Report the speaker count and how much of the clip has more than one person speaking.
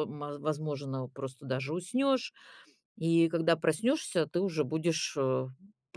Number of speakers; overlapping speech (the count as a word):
one, no overlap